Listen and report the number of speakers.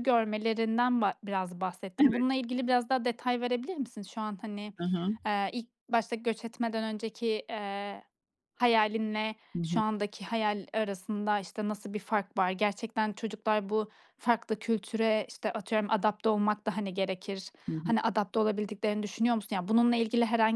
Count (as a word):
two